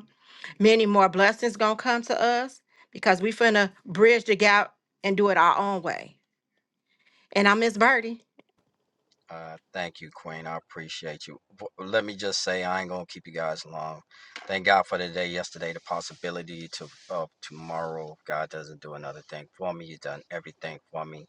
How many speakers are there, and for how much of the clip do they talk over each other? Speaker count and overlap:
two, no overlap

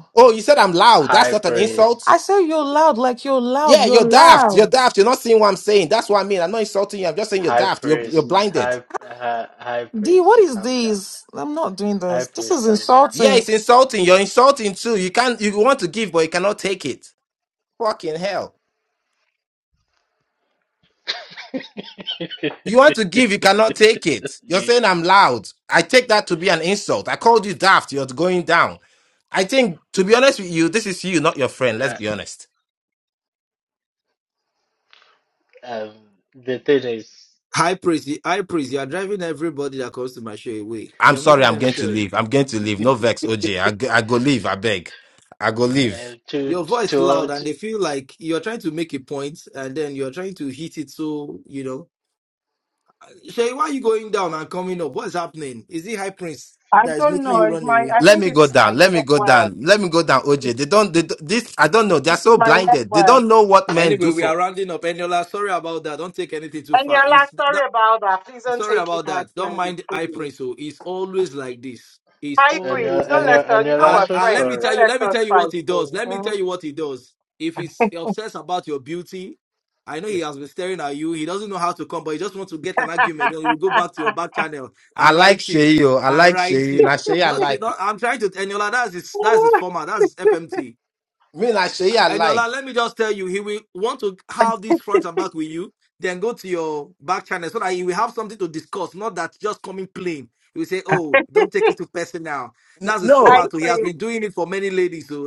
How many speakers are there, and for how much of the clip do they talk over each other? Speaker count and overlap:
five, about 21%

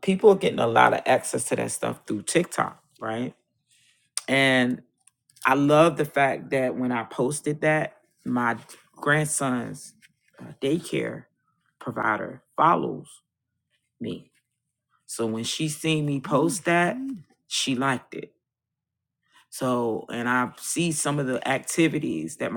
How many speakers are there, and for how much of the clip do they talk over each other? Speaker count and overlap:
one, no overlap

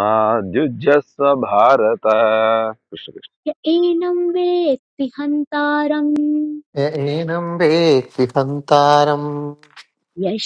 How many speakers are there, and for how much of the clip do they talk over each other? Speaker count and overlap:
three, no overlap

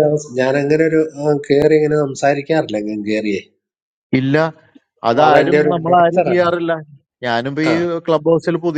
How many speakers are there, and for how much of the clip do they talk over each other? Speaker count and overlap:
two, about 15%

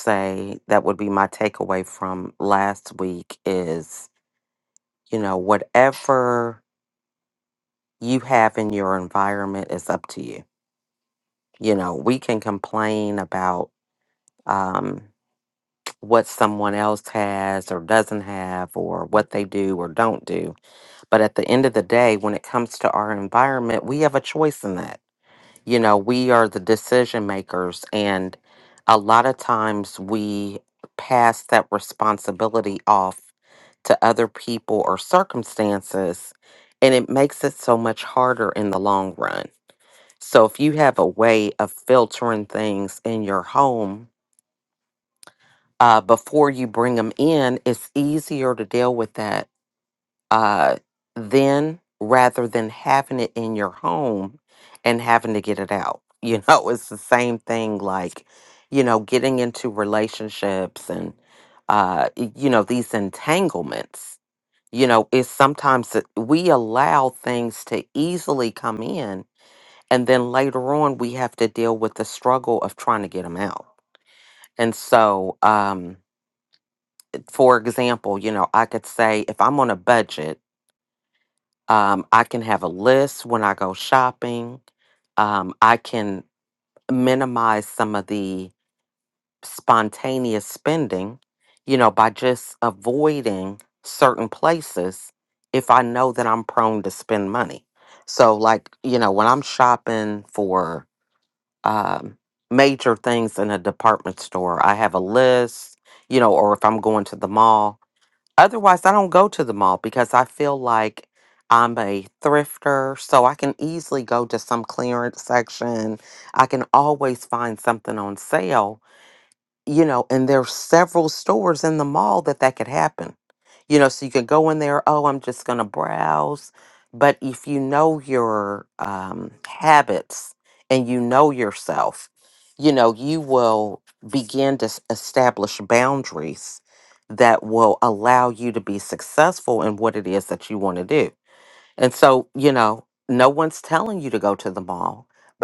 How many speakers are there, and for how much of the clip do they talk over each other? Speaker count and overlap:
one, no overlap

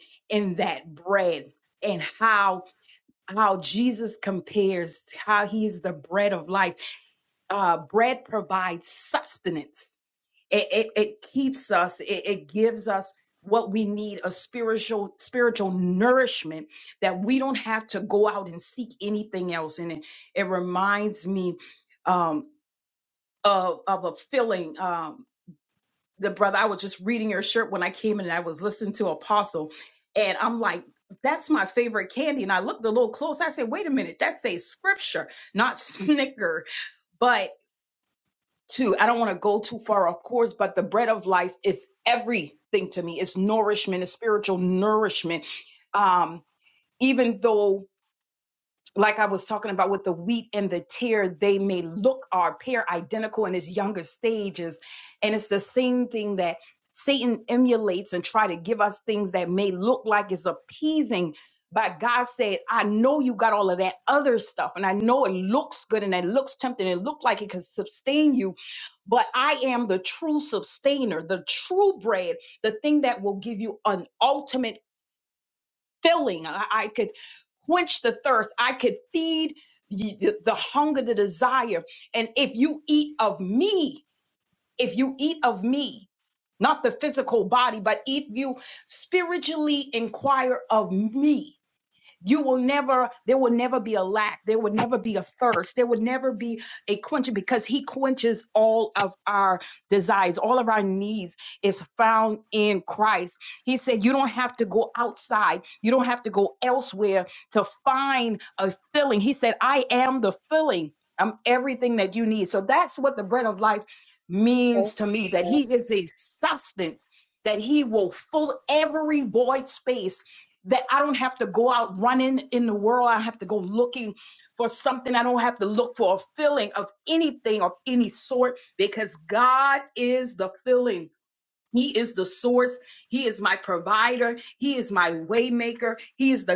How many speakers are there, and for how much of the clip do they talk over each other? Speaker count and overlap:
one, no overlap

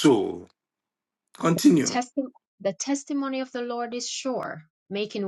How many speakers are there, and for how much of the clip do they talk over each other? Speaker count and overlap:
two, about 2%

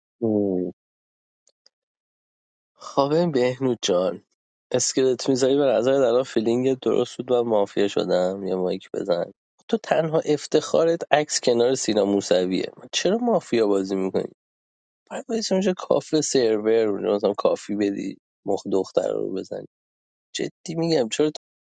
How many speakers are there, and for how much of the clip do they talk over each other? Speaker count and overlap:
one, no overlap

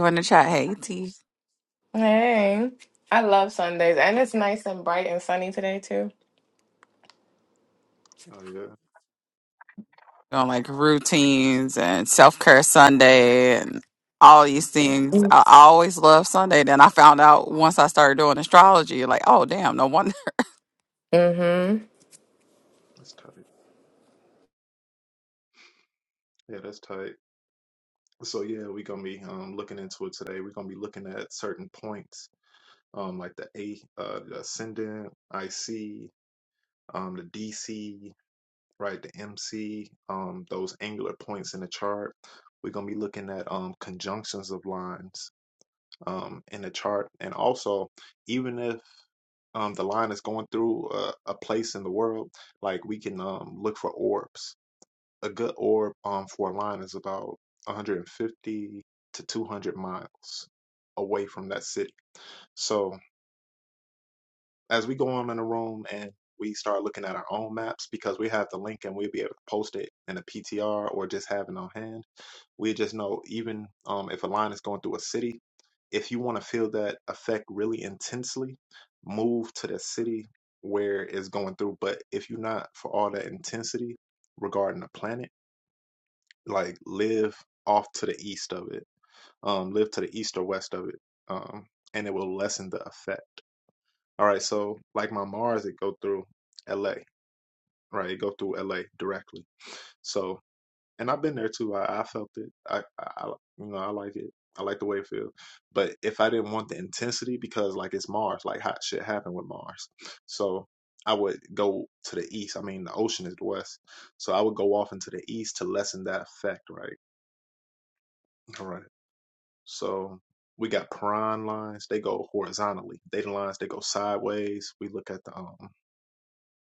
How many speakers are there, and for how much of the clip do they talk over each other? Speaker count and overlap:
three, no overlap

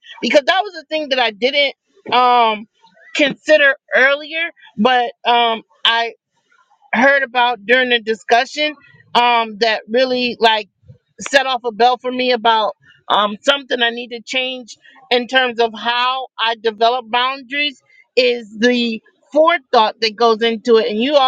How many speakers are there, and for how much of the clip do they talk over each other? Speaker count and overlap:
one, no overlap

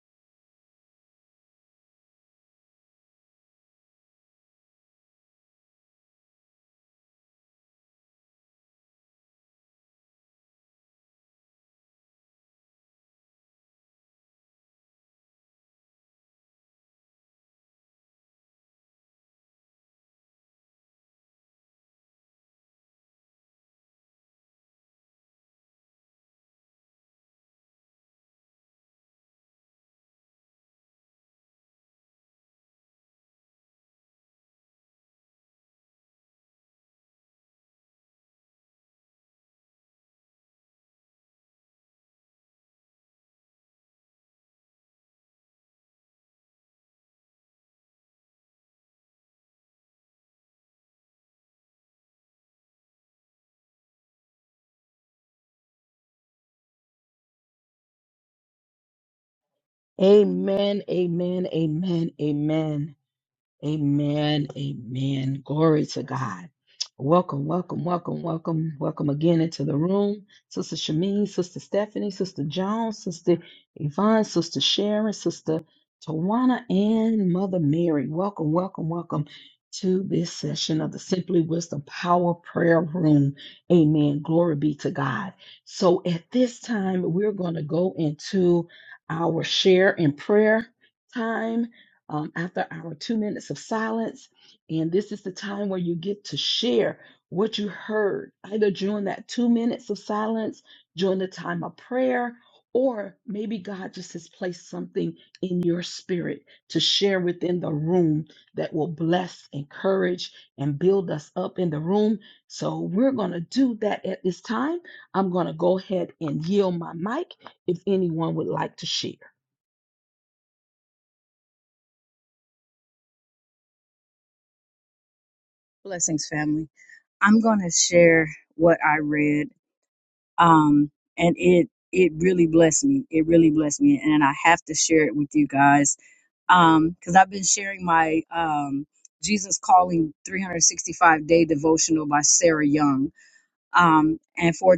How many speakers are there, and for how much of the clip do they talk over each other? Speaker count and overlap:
two, no overlap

